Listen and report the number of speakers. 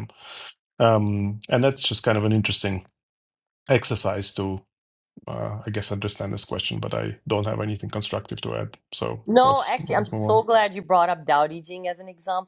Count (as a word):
two